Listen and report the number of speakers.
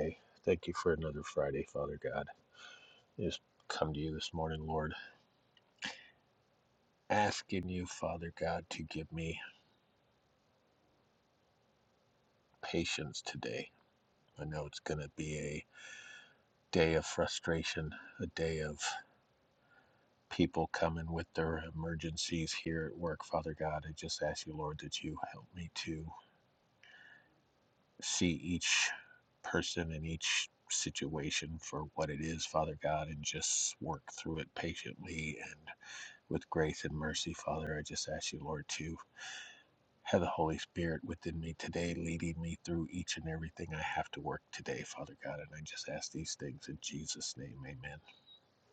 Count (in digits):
1